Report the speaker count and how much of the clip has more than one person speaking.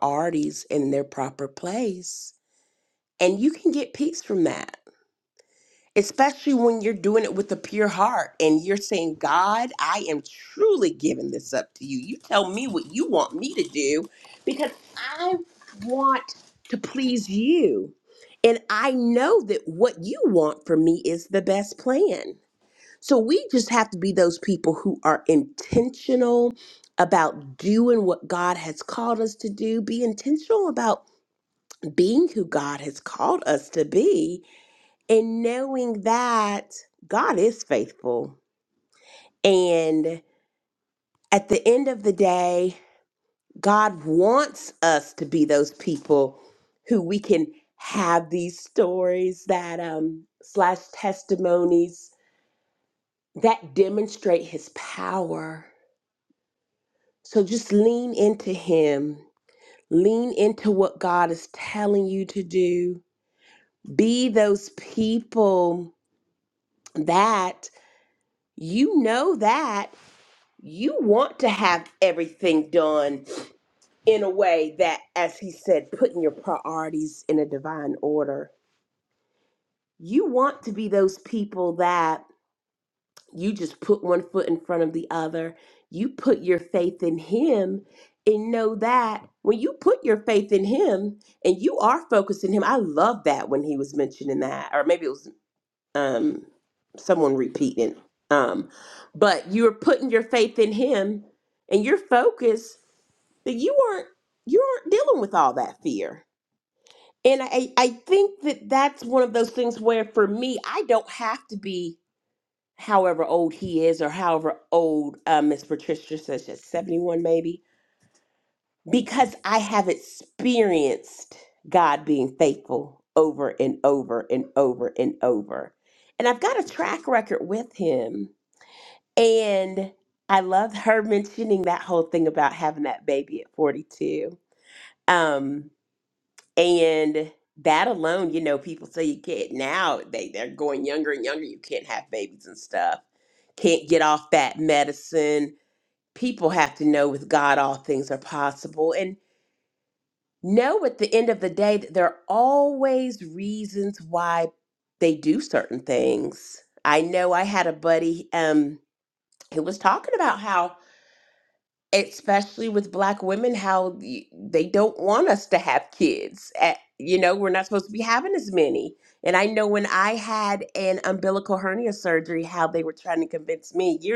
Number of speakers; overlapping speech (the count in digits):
1, no overlap